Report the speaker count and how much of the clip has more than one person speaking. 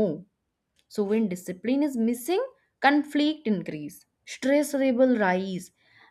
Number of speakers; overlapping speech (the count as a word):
one, no overlap